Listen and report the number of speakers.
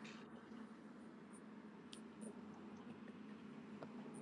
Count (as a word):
zero